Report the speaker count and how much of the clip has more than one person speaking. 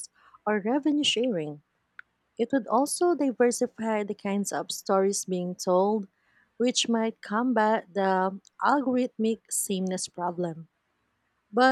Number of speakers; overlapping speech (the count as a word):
one, no overlap